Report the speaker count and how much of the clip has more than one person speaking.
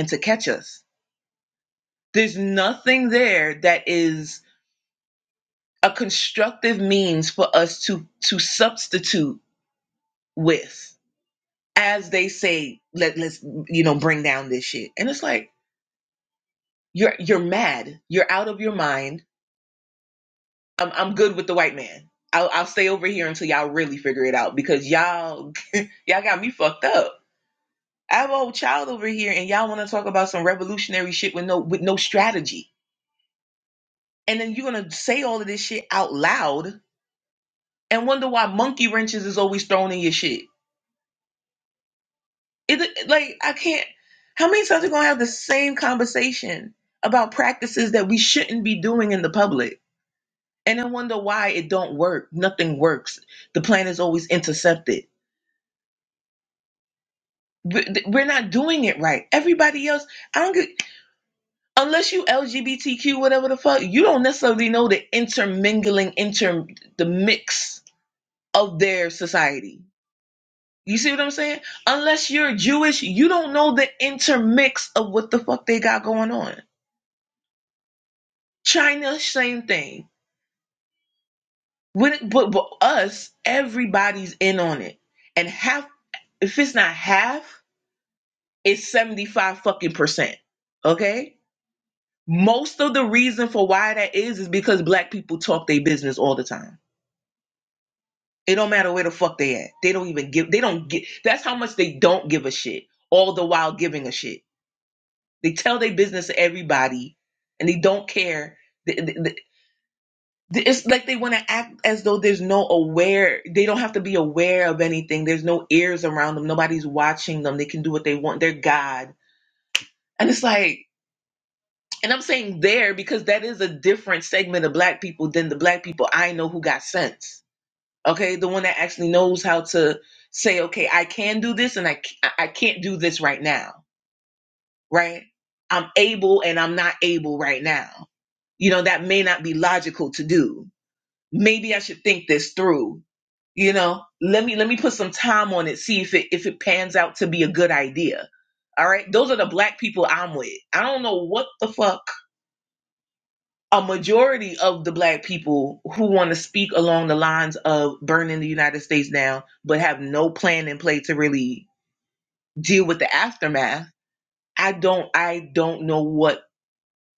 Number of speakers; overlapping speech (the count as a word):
one, no overlap